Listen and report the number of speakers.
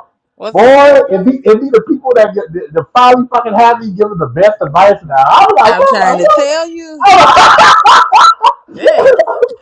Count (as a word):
two